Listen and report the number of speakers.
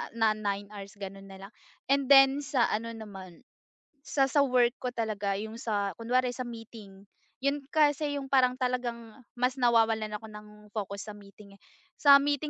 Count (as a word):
one